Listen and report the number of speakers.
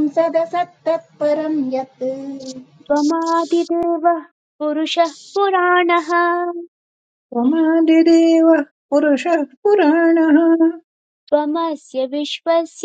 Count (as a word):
three